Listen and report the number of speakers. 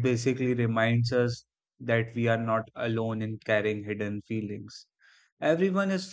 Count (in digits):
1